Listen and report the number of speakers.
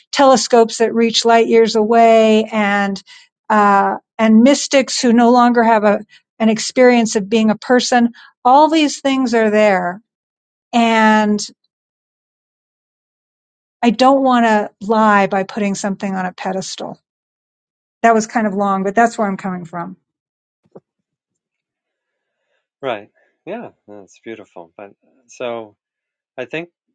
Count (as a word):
two